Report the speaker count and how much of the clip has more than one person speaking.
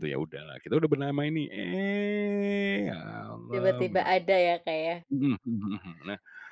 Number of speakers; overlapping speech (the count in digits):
2, about 9%